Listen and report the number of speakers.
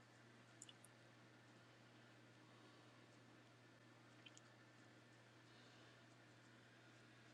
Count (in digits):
0